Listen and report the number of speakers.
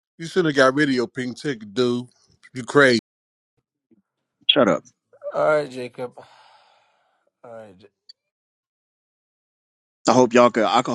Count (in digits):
3